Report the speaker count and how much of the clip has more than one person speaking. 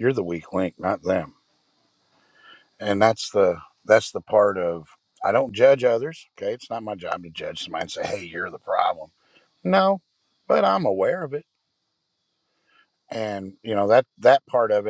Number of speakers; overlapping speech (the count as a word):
one, no overlap